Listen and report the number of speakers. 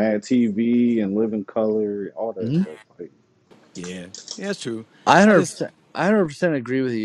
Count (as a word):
three